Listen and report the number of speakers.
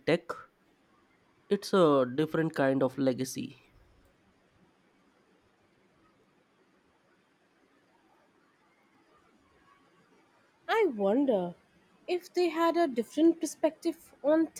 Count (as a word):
two